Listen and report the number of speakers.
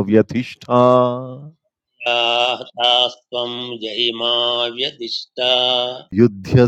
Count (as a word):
two